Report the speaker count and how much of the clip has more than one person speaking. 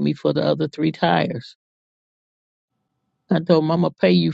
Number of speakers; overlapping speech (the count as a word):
one, no overlap